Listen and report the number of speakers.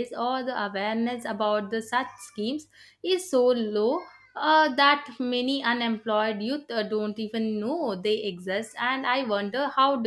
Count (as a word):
one